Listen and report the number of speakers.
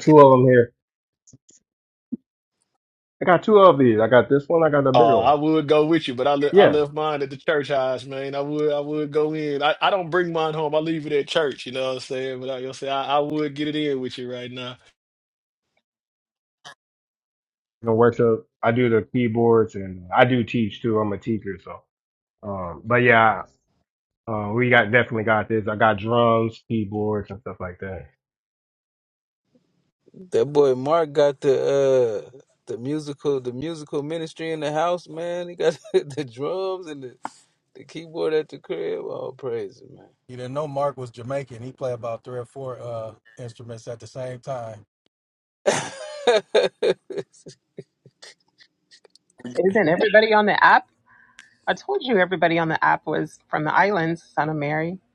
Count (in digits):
5